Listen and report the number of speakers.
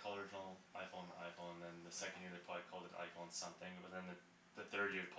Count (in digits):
1